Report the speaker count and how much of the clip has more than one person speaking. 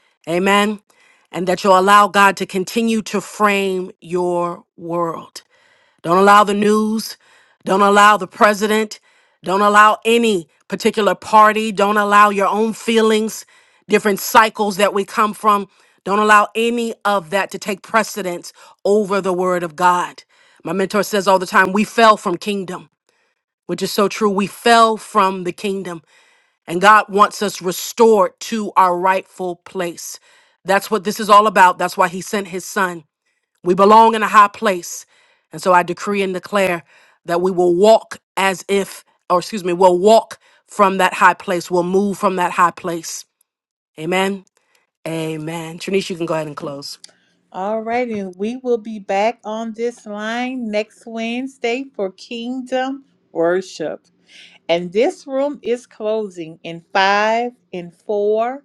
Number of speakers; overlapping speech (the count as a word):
two, no overlap